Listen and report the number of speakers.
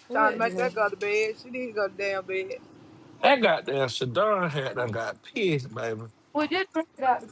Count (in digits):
3